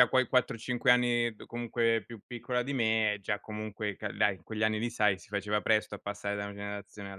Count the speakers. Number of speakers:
1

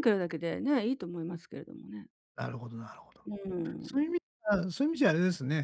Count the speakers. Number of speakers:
2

